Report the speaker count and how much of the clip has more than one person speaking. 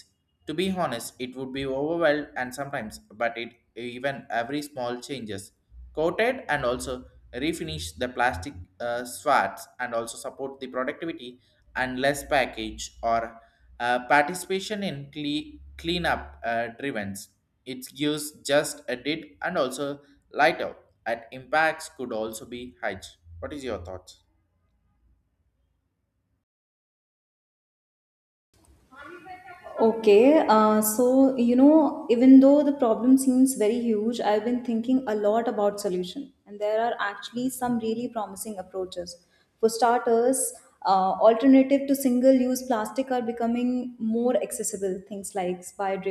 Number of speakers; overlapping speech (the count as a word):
two, no overlap